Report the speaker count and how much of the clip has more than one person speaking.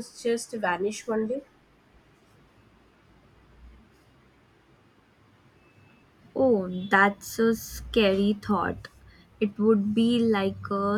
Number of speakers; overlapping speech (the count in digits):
2, no overlap